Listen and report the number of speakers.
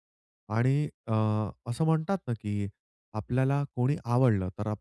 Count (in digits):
1